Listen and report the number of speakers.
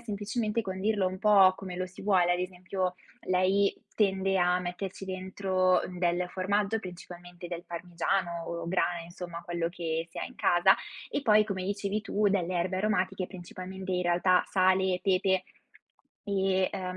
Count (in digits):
1